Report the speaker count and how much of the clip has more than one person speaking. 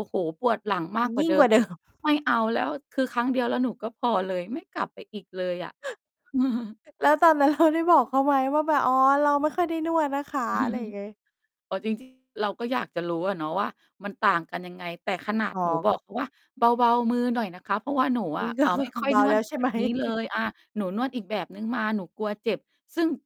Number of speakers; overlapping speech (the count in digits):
2, about 9%